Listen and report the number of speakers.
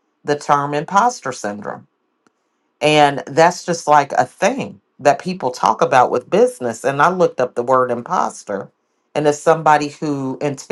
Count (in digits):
1